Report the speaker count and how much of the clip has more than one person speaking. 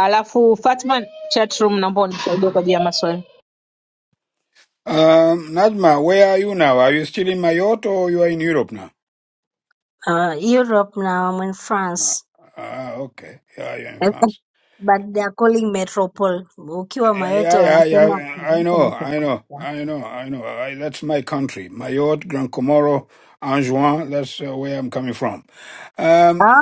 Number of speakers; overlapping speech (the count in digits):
3, about 9%